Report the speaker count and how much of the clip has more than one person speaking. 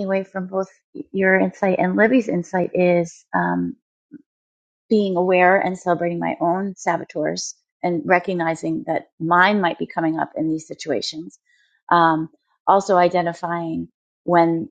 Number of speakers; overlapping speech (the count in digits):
1, no overlap